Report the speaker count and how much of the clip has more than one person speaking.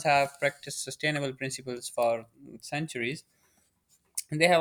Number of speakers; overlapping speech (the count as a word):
one, no overlap